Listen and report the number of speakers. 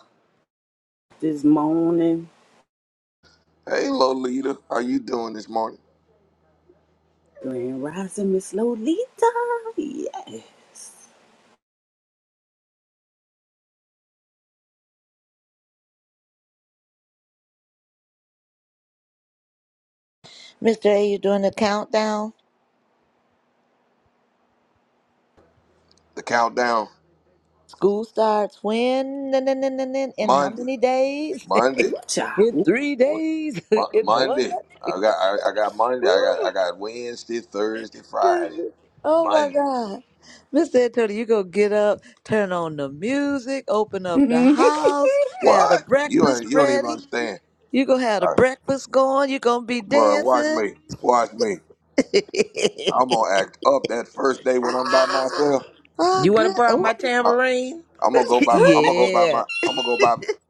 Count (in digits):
4